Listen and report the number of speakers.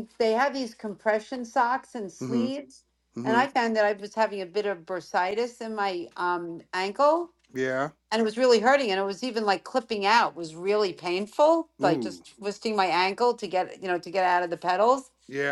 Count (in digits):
2